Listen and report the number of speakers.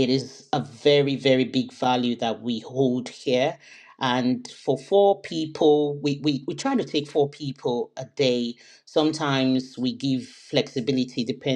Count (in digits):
1